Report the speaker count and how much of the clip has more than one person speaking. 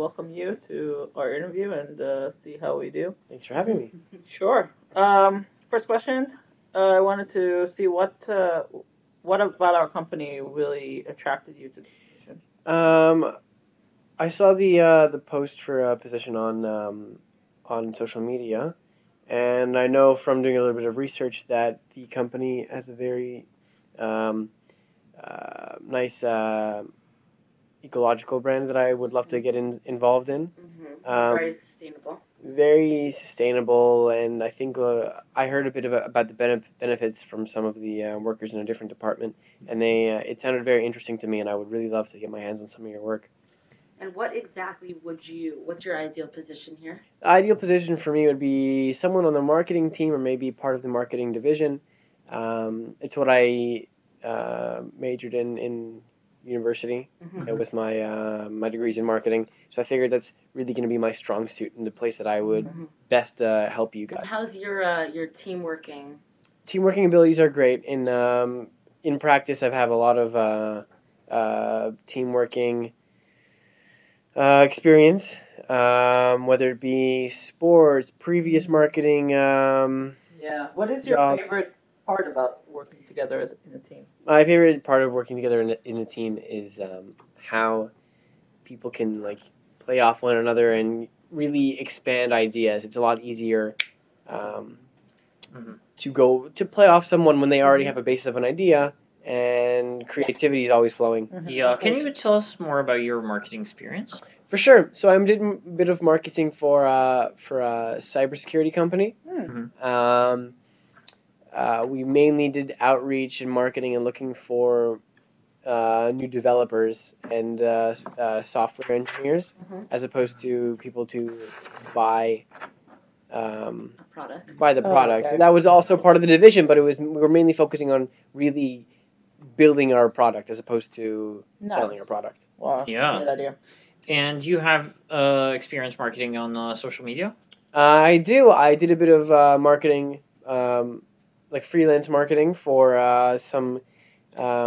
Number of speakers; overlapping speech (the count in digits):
4, about 4%